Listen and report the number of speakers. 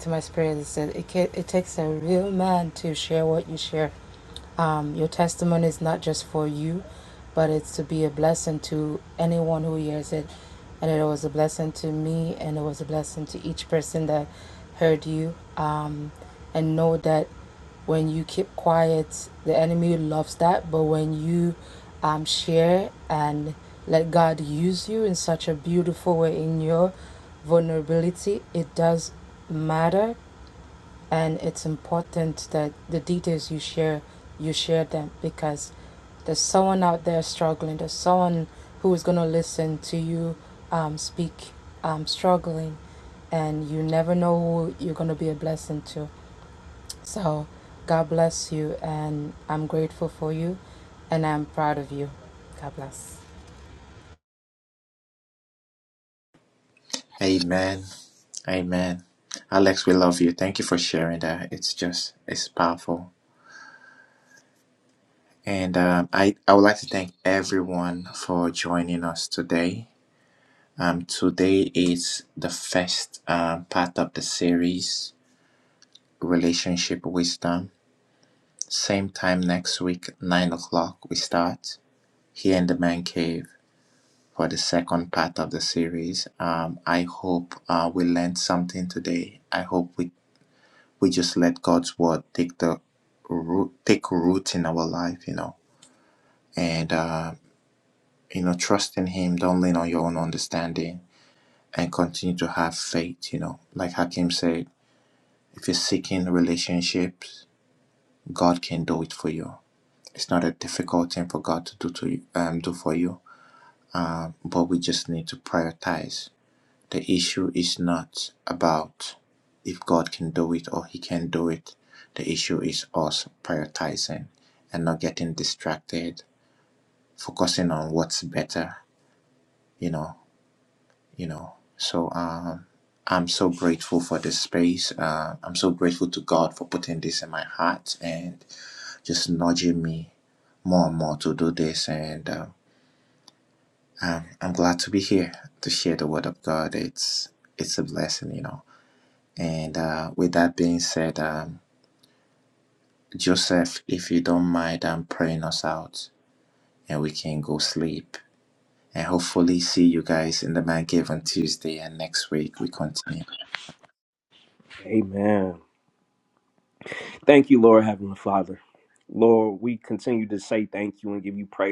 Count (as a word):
three